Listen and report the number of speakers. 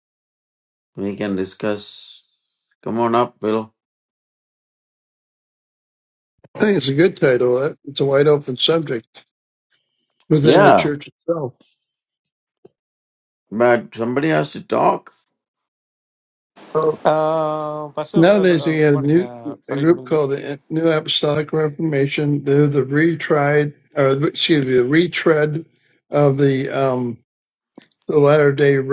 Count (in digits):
3